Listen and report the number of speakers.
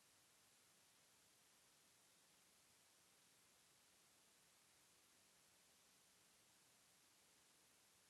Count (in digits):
0